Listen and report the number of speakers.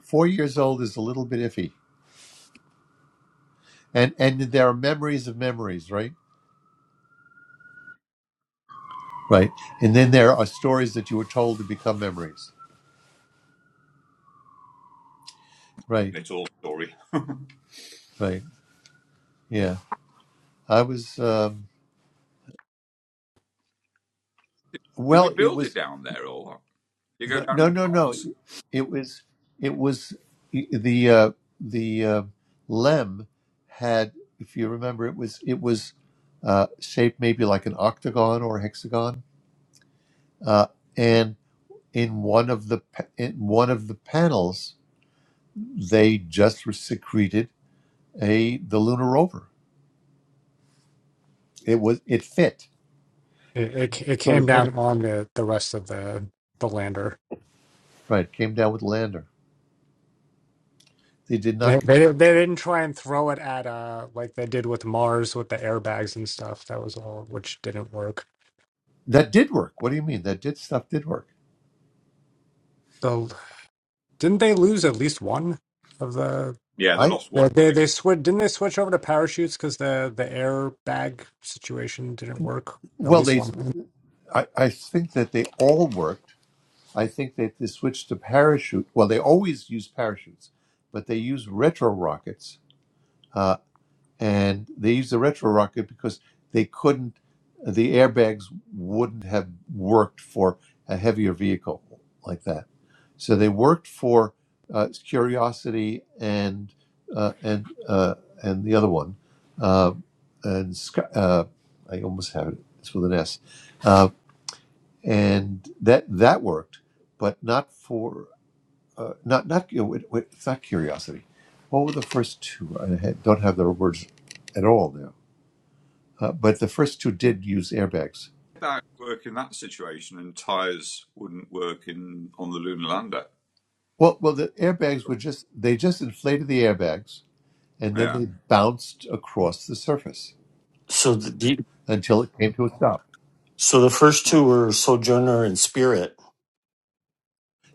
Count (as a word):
four